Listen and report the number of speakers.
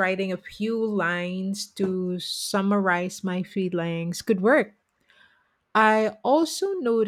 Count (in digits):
1